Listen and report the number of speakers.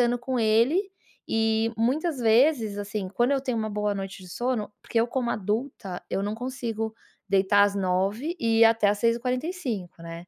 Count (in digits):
1